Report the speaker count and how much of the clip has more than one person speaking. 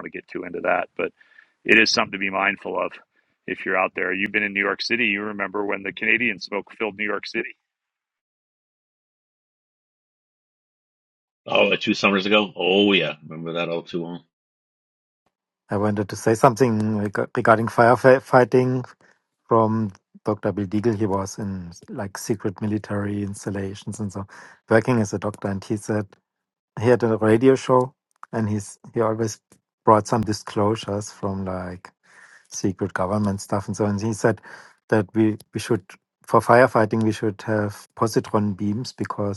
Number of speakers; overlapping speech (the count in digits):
3, no overlap